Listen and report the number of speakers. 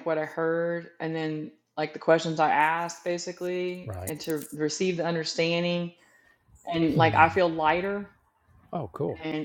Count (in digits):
2